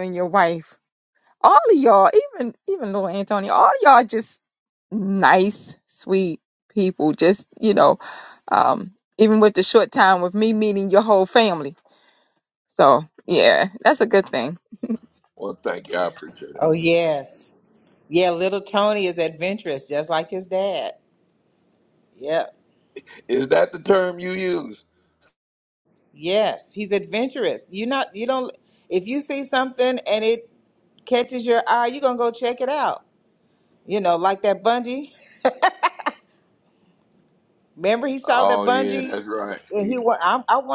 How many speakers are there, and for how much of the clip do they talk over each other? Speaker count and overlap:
three, about 3%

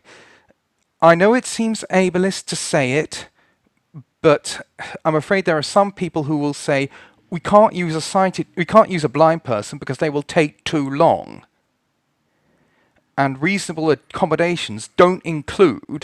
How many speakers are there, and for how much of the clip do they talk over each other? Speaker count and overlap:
one, no overlap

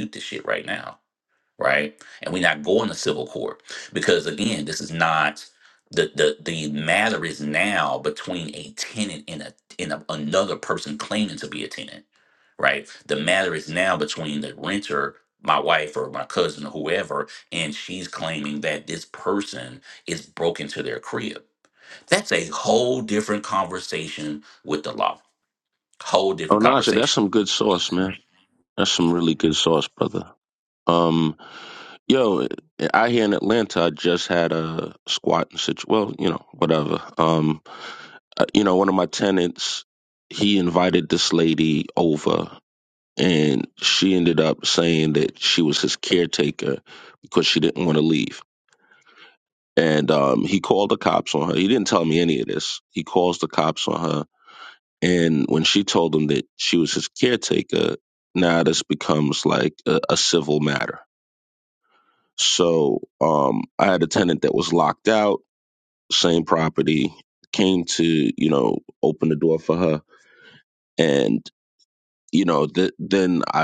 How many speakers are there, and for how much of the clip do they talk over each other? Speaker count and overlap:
two, about 1%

